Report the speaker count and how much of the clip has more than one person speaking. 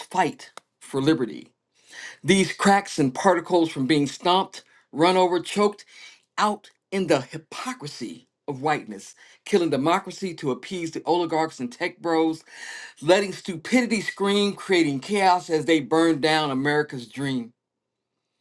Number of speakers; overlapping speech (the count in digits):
1, no overlap